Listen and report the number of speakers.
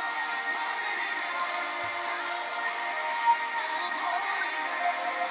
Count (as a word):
zero